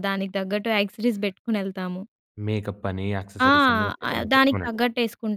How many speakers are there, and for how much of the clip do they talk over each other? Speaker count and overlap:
2, about 7%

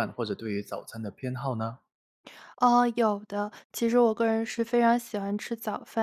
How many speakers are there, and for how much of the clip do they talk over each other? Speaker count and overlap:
2, no overlap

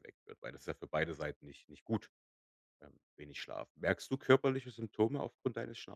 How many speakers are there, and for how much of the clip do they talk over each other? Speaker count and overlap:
1, no overlap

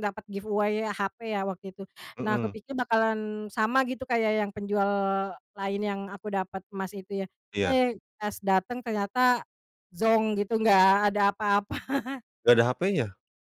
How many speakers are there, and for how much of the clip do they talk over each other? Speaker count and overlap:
2, about 3%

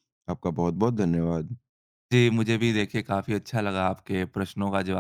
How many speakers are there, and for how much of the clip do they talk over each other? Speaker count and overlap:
2, no overlap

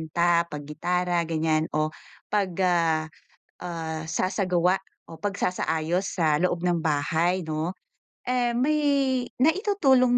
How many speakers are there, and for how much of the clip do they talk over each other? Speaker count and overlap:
1, no overlap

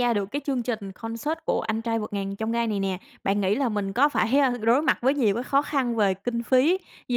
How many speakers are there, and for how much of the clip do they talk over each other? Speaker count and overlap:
1, no overlap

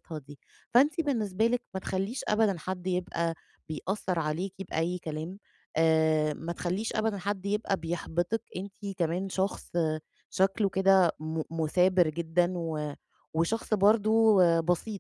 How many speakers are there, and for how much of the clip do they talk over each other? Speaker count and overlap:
1, no overlap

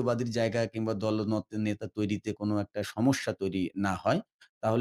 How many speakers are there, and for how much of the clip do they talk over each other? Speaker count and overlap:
1, no overlap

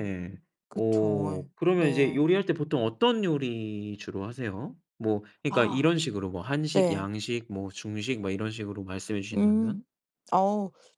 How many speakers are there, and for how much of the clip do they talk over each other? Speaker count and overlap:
2, about 20%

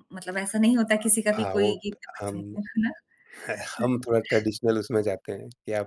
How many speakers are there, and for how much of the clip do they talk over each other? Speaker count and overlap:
2, about 10%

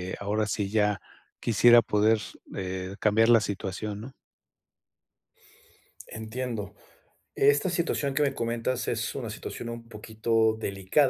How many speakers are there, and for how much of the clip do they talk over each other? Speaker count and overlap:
2, no overlap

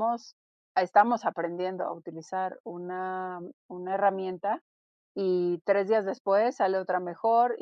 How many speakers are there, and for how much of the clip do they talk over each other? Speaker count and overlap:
1, no overlap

